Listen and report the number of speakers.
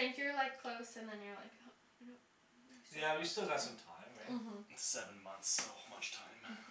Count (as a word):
three